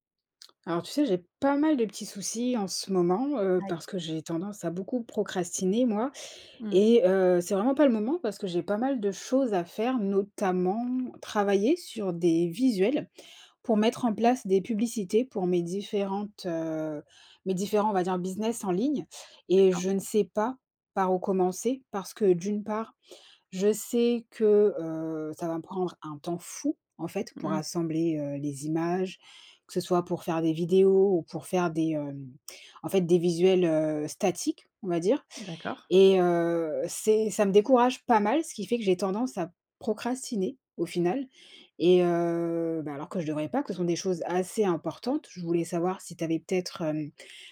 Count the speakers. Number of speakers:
two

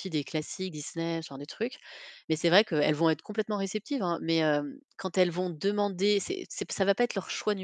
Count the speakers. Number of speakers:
one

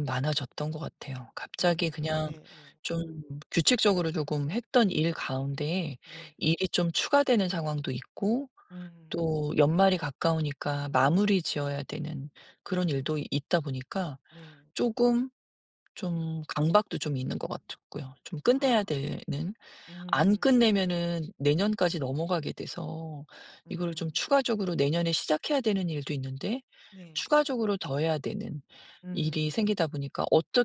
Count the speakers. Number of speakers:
two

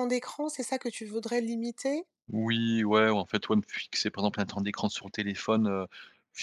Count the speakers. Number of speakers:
two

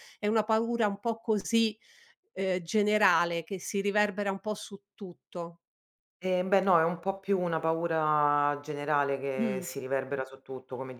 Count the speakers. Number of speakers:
two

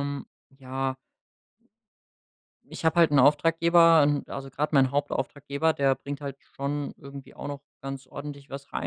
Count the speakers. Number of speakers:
one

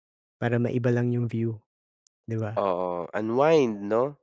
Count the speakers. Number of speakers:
two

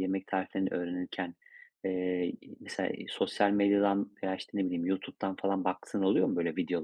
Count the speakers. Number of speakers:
one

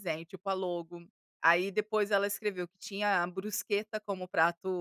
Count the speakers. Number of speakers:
one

